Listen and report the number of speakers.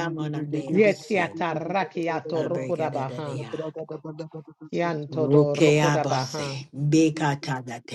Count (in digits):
3